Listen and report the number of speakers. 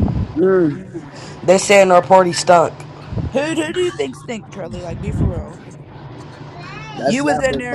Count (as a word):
three